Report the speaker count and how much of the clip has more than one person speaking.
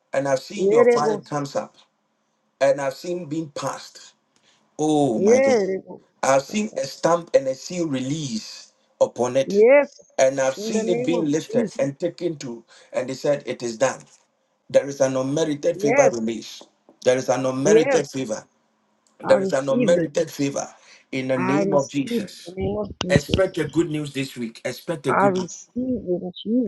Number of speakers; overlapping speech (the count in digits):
2, about 23%